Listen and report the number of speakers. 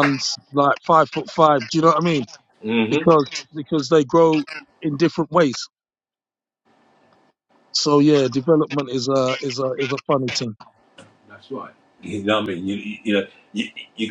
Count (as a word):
two